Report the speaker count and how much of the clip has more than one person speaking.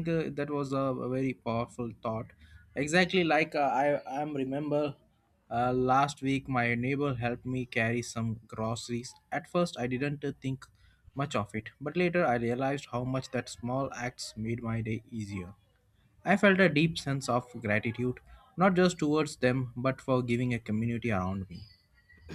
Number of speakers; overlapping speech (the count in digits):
1, no overlap